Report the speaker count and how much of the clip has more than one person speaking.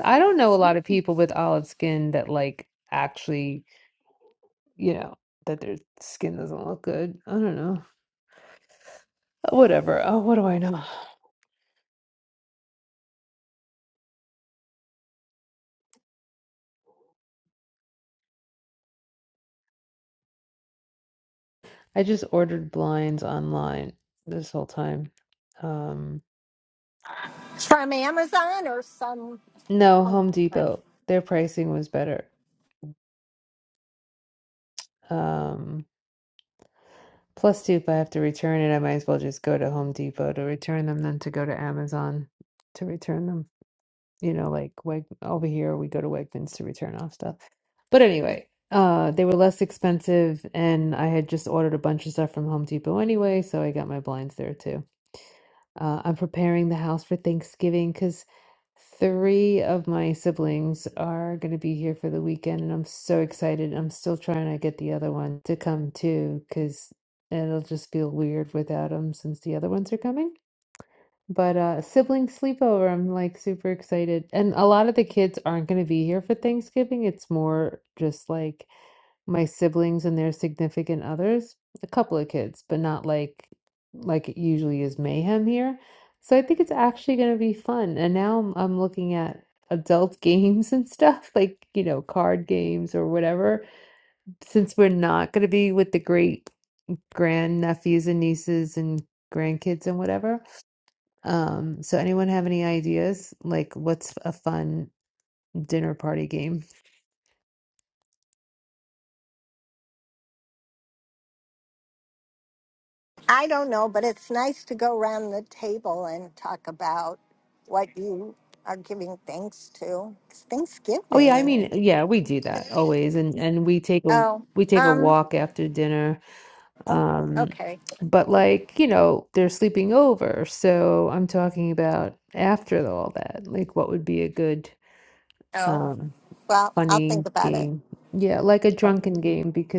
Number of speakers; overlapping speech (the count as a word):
two, about 2%